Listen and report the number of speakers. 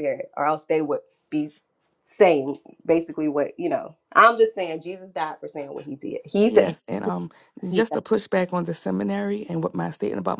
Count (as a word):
two